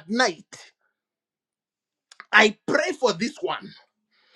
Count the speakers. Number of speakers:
one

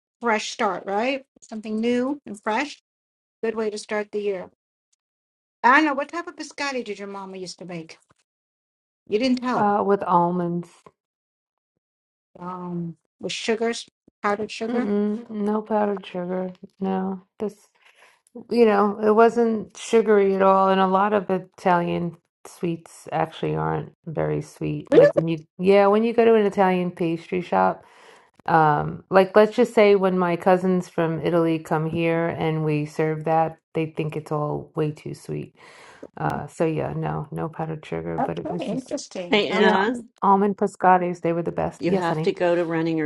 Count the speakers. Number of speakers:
three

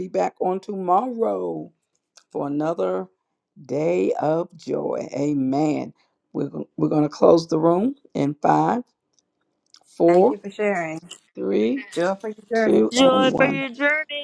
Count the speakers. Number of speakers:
three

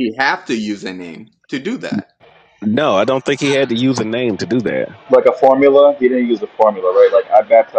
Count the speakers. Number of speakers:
three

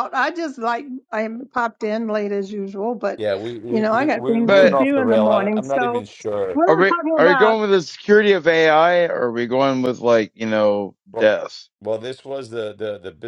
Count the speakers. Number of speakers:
three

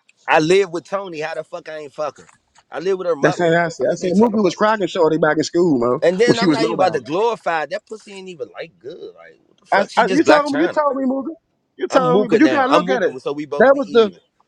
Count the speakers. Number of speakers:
two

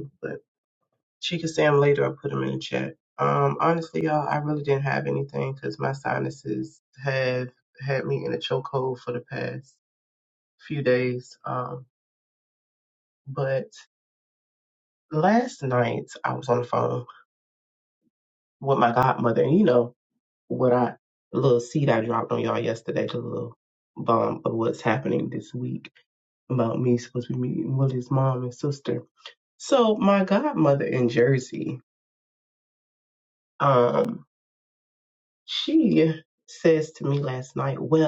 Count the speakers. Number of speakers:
one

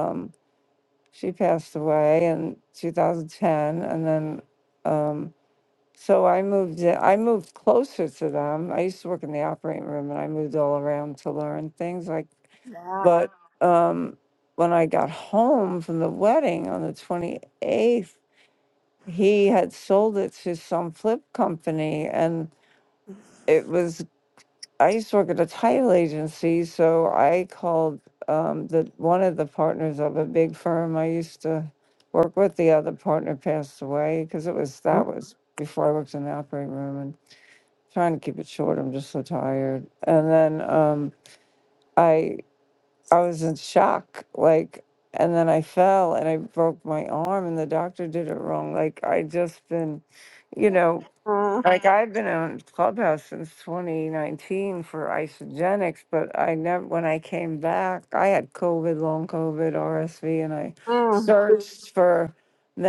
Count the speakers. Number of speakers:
two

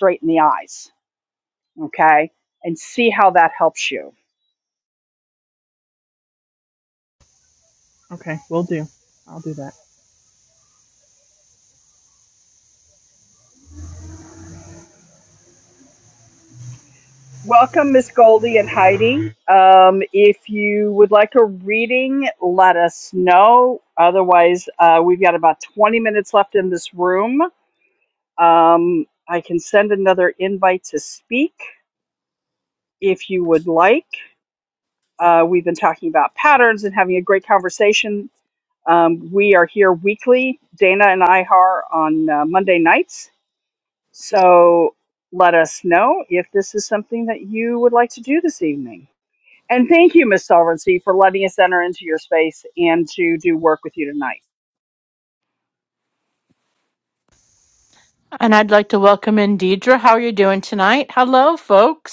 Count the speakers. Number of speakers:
three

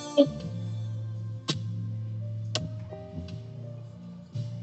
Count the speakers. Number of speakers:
zero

